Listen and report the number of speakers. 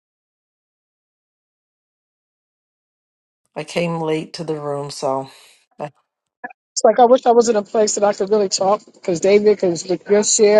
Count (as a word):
two